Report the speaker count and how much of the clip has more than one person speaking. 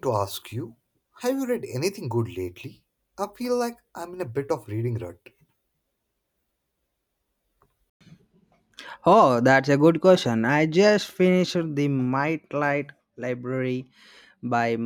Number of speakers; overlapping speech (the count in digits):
2, no overlap